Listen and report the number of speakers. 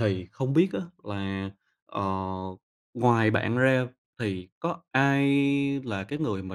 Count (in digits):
1